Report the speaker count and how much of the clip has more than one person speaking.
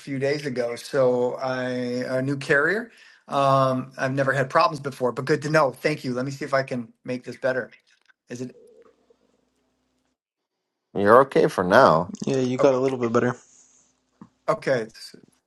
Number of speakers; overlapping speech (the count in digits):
3, about 1%